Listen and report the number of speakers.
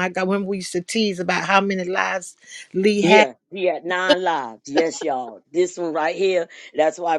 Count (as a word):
two